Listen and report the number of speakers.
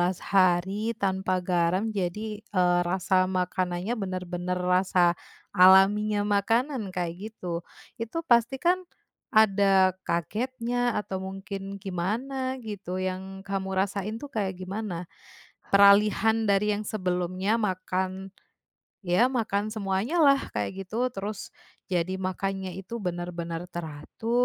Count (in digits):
1